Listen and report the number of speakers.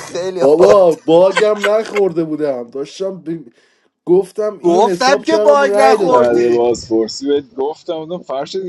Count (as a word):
three